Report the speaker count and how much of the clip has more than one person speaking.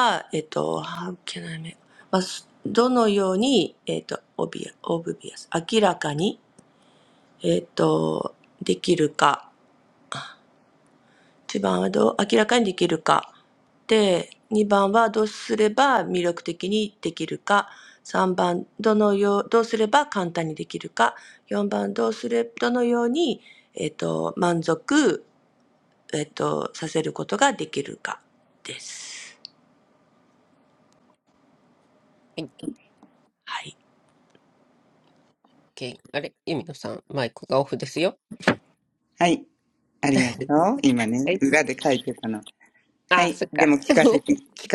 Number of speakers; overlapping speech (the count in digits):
3, about 2%